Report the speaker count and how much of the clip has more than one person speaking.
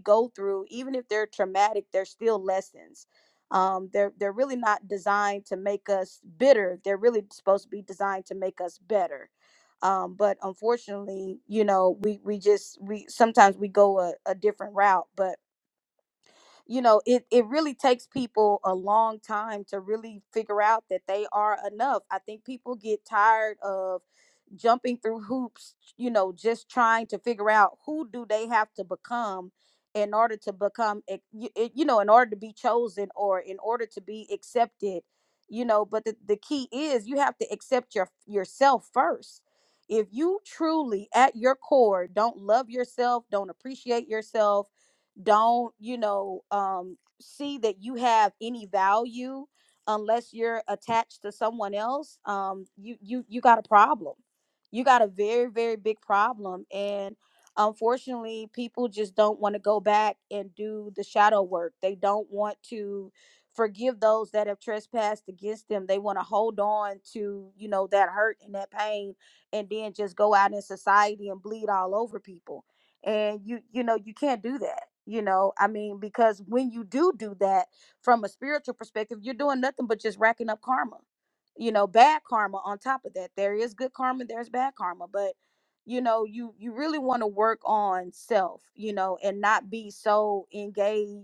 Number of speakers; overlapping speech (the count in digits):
1, no overlap